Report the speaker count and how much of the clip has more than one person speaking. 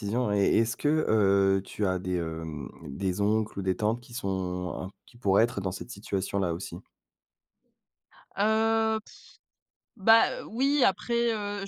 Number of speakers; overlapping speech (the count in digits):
2, no overlap